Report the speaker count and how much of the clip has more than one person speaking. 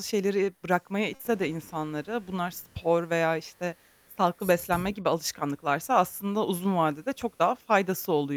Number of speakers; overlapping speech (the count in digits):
1, no overlap